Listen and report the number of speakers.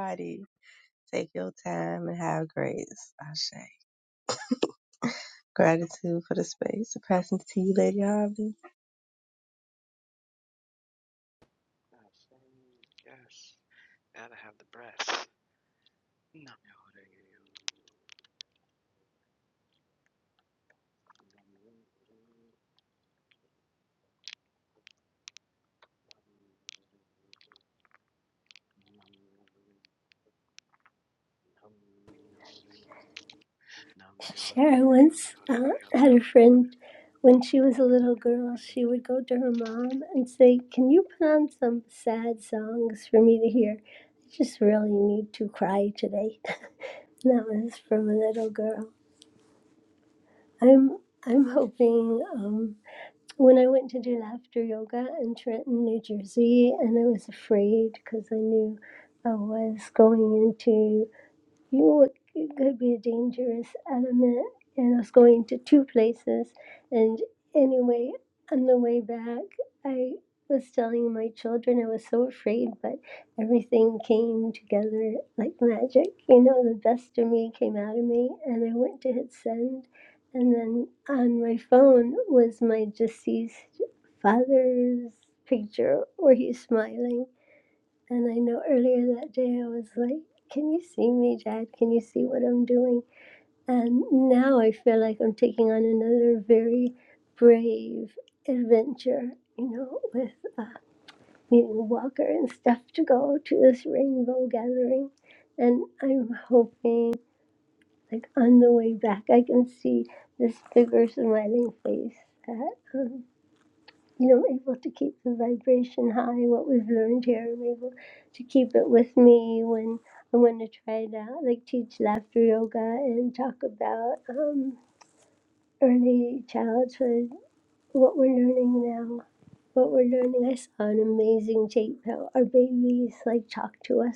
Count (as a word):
three